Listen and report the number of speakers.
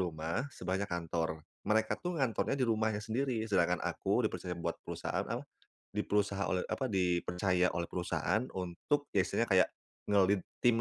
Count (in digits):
1